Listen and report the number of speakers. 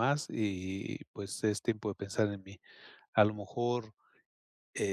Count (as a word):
one